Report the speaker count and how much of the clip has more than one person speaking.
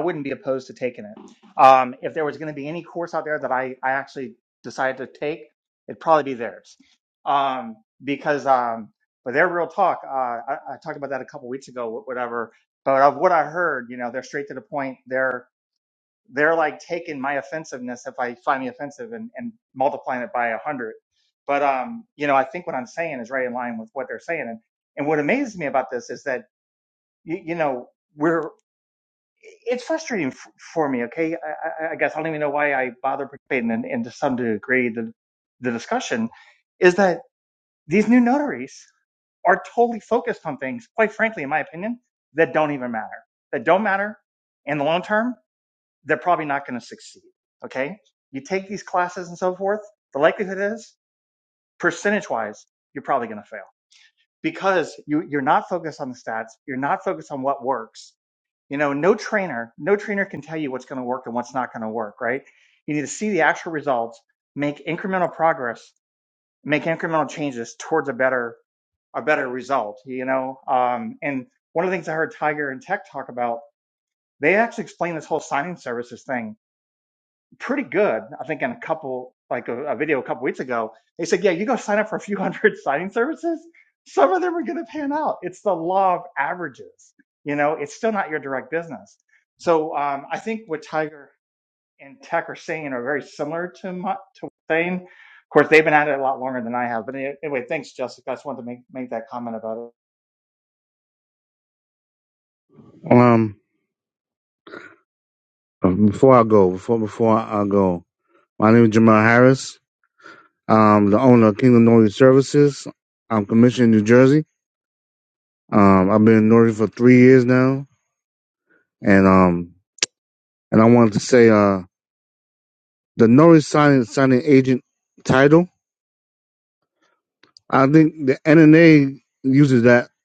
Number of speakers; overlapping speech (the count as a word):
two, no overlap